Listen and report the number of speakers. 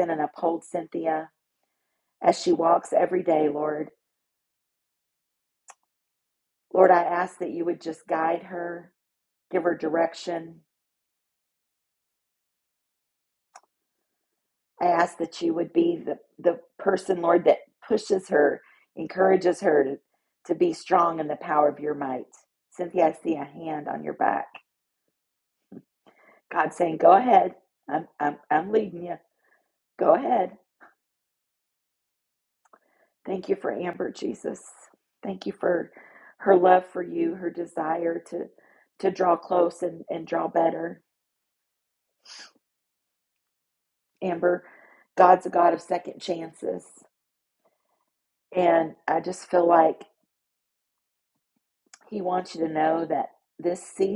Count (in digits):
1